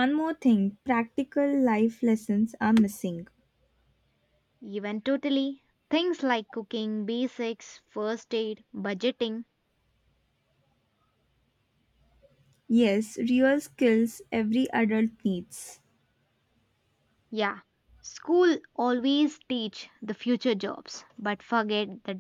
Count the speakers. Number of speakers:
2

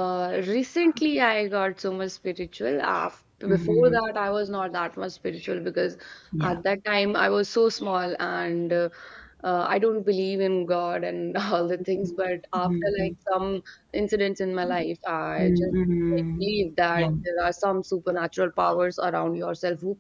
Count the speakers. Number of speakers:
2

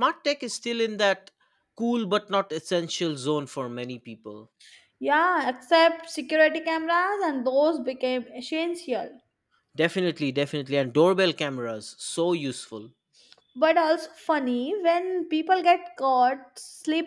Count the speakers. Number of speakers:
2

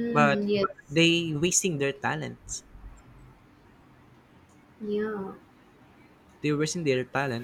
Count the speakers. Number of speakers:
2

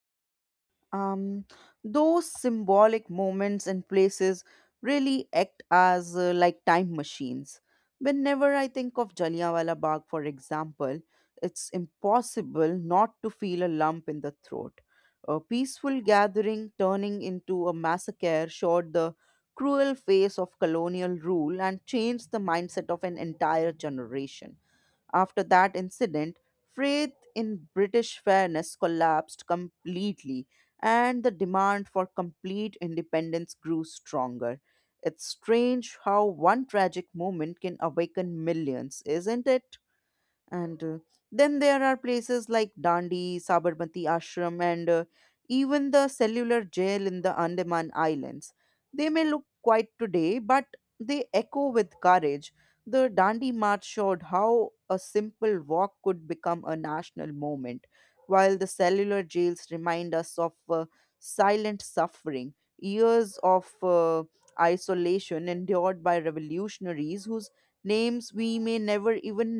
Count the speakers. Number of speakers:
1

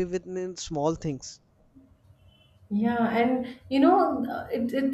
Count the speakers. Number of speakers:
2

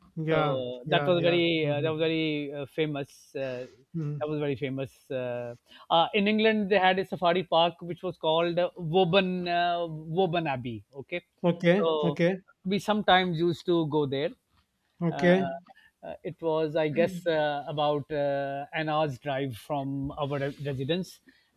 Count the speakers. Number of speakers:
2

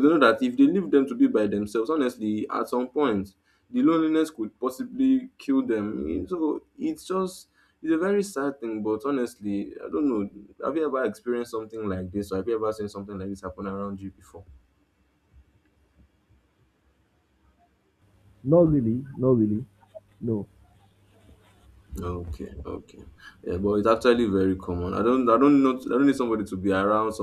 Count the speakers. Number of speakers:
2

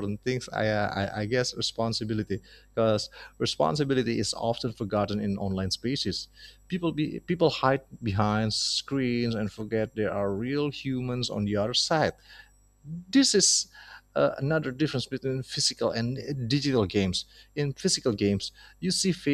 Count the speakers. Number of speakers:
1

